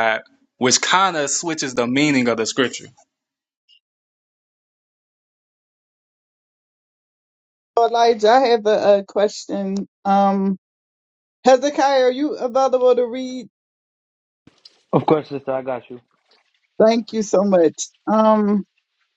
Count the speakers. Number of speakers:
3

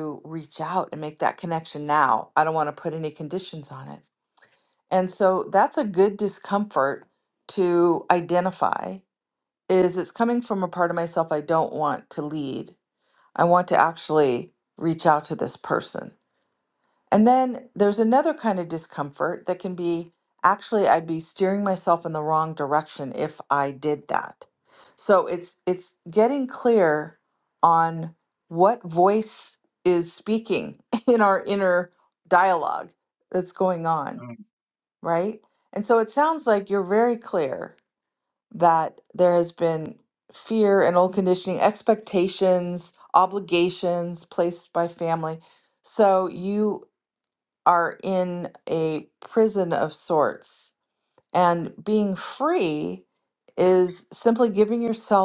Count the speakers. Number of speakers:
1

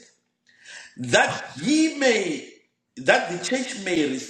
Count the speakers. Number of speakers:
1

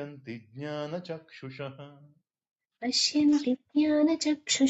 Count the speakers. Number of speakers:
2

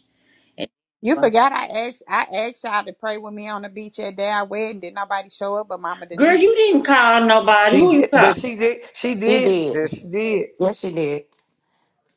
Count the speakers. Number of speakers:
4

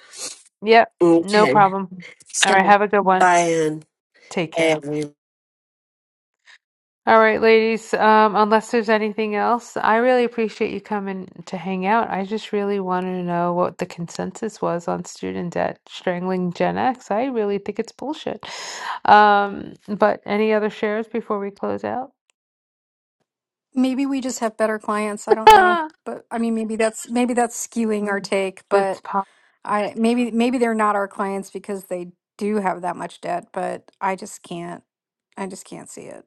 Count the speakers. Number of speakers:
3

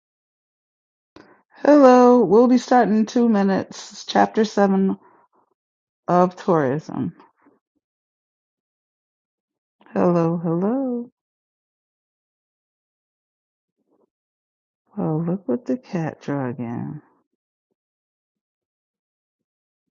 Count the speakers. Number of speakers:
1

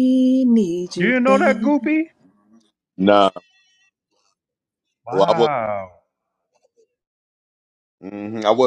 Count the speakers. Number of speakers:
3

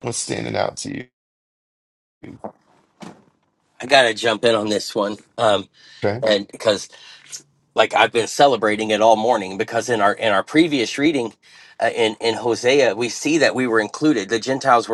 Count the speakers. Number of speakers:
2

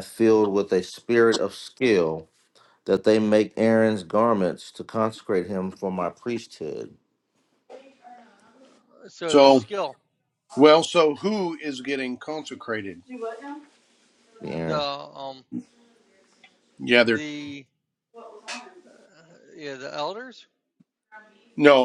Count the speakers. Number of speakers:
3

